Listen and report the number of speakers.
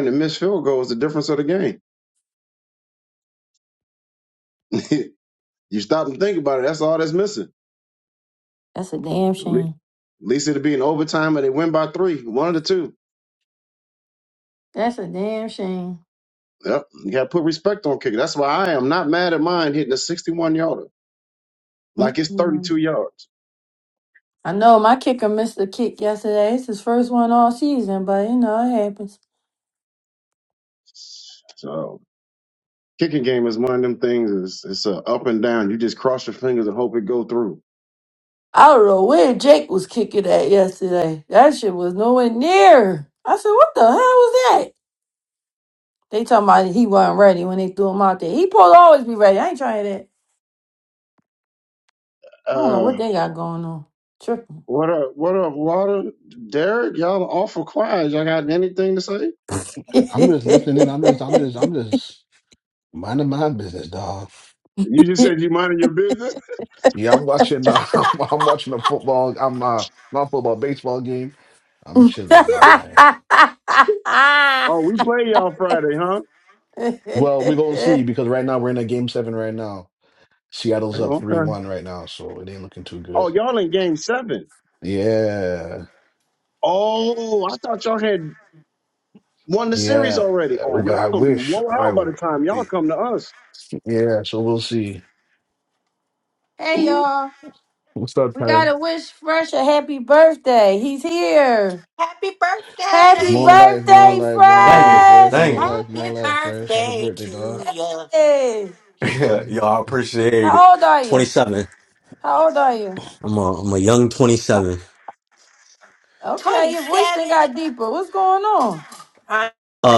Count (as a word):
five